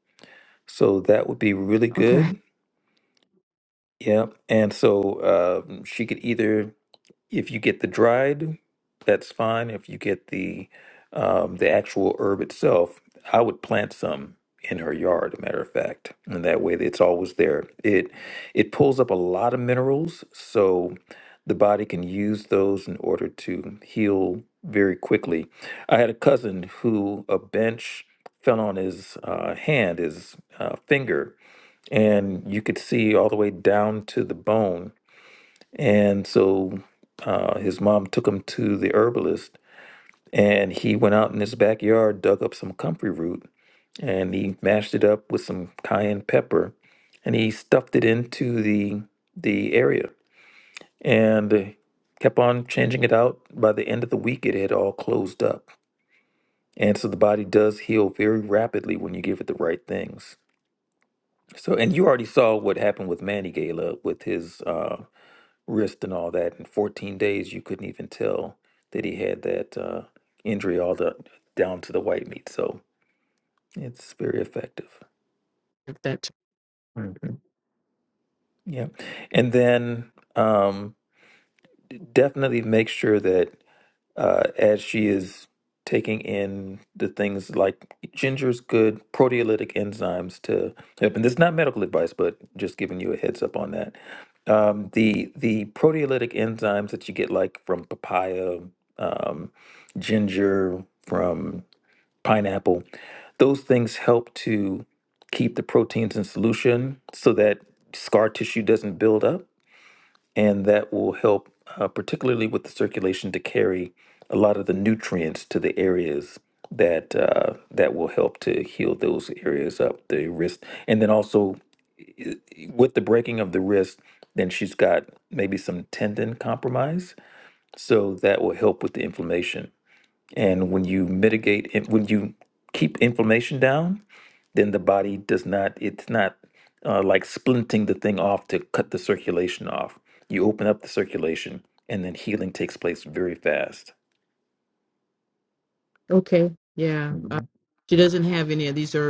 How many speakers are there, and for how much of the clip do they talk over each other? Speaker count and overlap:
two, under 1%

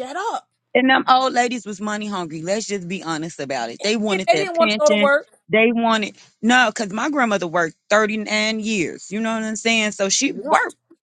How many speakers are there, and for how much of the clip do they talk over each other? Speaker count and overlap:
two, about 12%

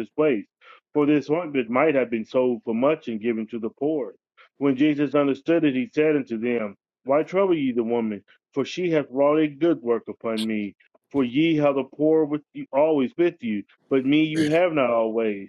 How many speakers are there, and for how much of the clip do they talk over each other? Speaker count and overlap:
one, no overlap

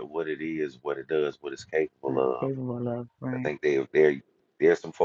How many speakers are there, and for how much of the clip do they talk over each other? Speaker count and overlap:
two, about 11%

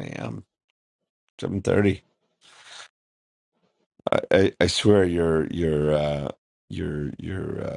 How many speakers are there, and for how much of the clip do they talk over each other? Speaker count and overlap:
one, no overlap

